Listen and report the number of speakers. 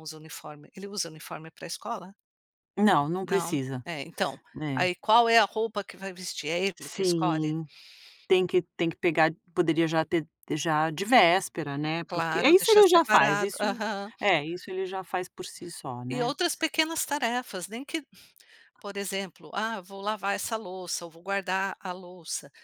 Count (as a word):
two